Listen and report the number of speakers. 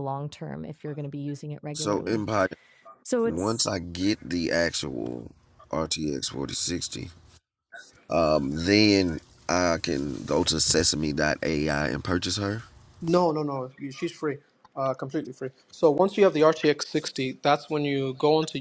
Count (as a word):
three